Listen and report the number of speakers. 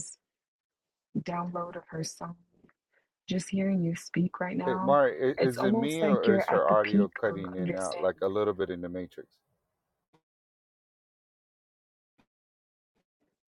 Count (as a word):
two